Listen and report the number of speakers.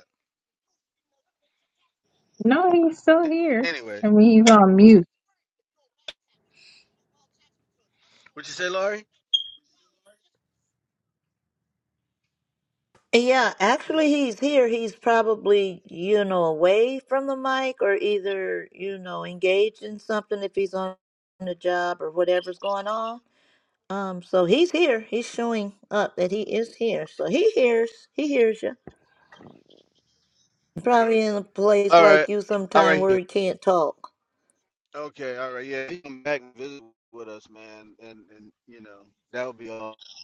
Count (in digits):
3